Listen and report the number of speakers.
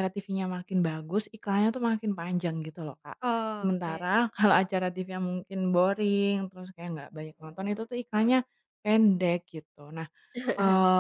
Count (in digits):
2